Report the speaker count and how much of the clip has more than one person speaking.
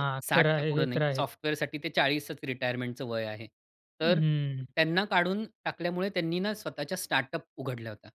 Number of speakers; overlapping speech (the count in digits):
2, about 18%